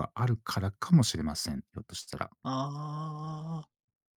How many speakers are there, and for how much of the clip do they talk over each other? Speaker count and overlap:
2, no overlap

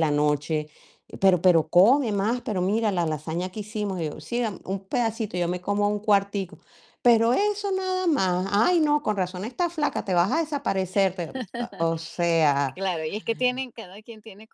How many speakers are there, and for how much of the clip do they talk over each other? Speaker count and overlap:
2, under 1%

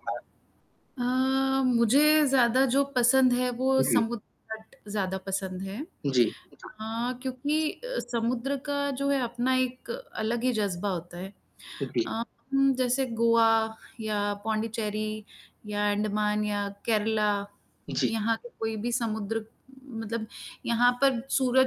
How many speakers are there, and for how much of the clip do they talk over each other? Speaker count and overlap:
2, about 2%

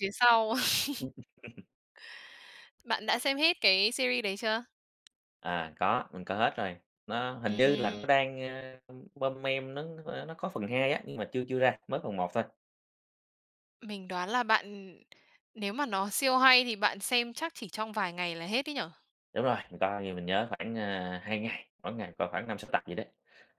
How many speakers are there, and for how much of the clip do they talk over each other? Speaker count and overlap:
2, about 2%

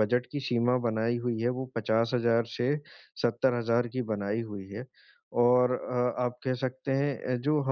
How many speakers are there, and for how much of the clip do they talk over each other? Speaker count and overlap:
1, no overlap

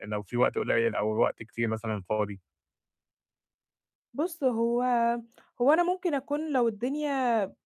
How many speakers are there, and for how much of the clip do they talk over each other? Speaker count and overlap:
2, no overlap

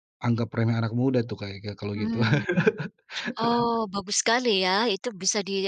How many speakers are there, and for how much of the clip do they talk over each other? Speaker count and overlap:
2, about 5%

